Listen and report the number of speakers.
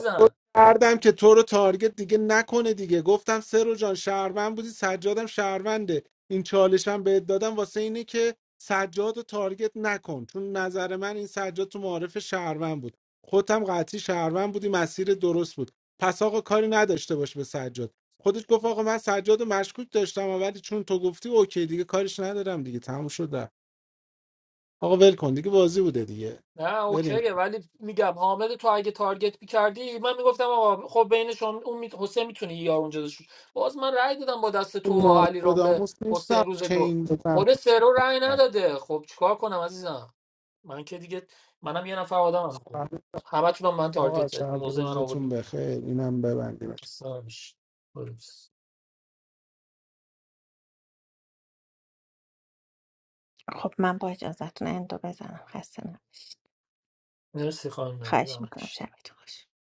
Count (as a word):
three